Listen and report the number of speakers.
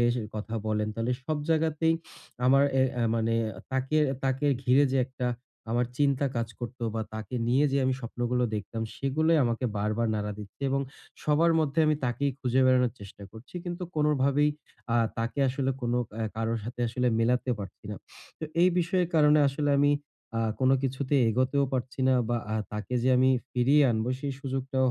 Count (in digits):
1